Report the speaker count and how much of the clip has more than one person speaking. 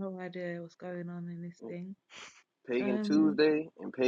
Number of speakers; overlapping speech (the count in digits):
2, about 14%